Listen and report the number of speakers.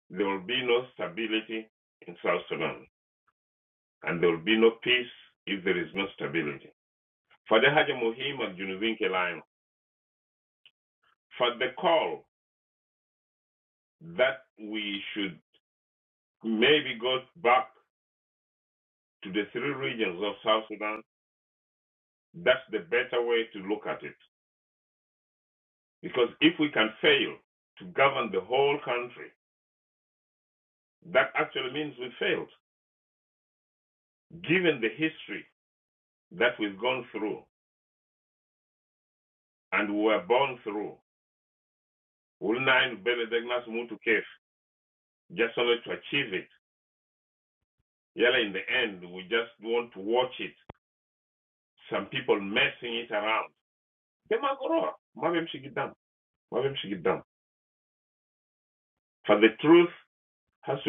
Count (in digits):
1